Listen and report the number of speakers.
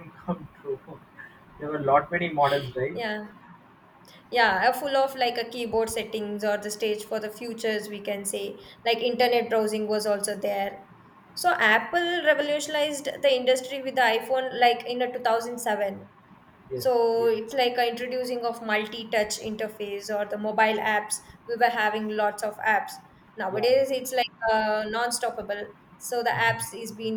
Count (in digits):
2